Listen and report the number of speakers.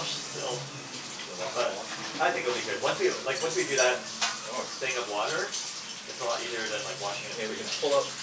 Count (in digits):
2